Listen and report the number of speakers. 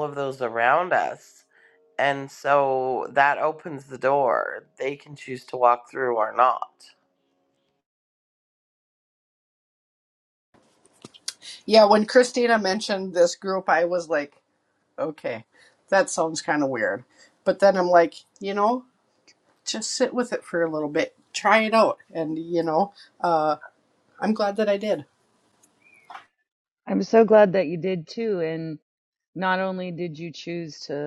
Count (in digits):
3